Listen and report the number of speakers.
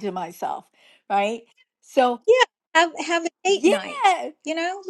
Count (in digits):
2